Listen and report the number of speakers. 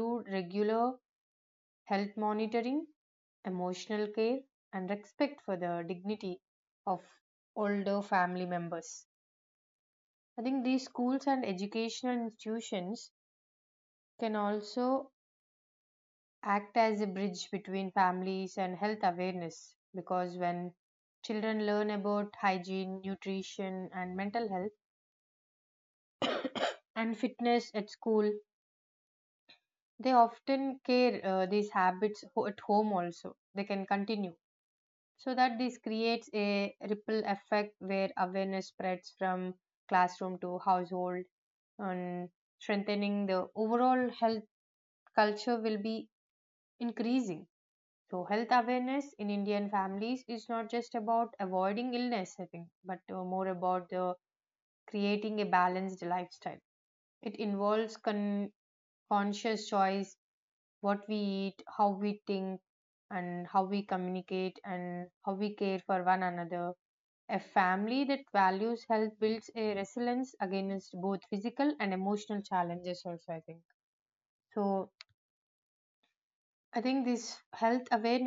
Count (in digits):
1